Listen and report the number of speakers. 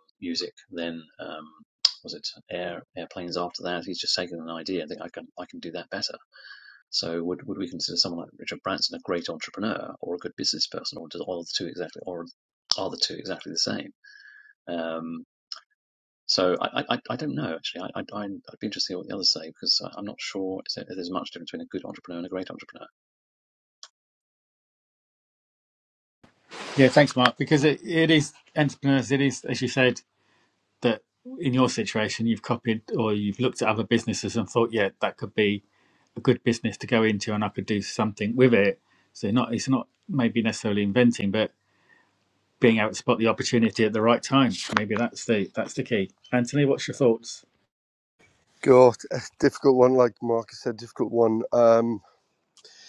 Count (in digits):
3